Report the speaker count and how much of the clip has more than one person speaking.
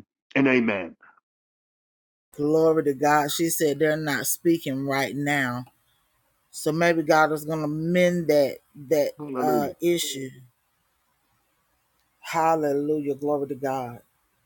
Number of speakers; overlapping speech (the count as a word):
two, about 3%